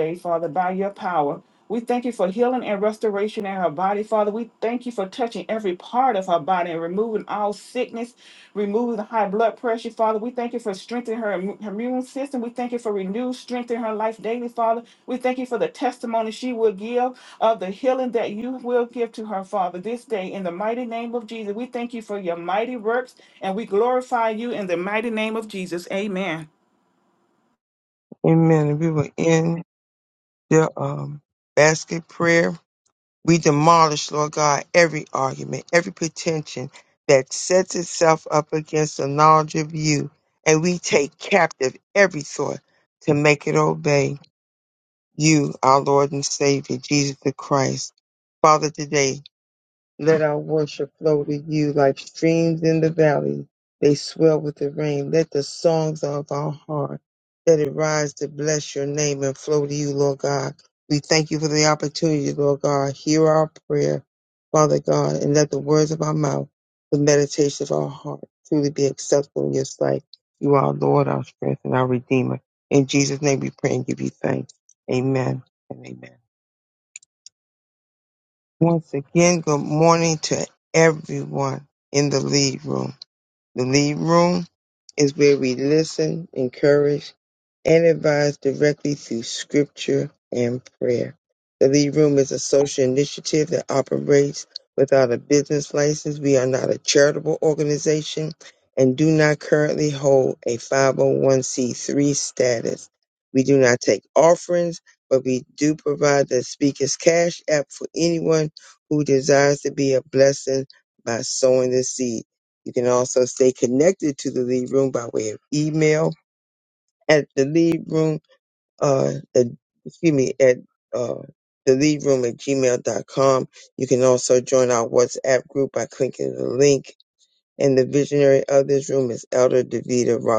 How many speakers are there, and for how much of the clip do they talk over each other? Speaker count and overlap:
2, no overlap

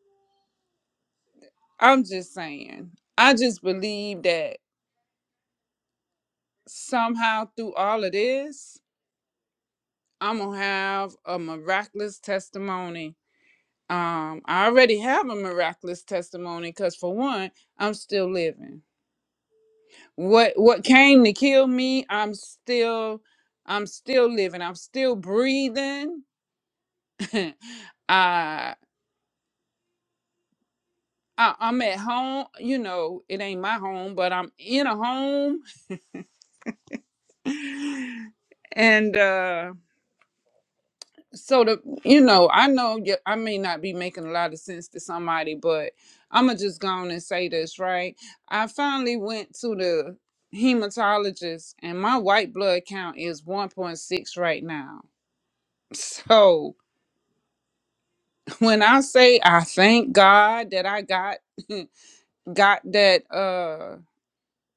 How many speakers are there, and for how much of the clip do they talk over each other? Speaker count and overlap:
1, no overlap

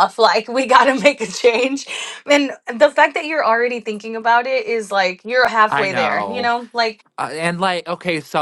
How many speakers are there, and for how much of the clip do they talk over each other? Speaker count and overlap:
2, about 10%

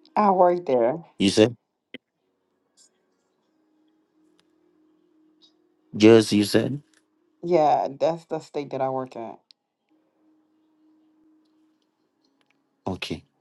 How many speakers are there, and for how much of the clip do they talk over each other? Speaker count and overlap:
2, no overlap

